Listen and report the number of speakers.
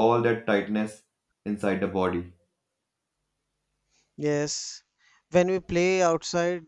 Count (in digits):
2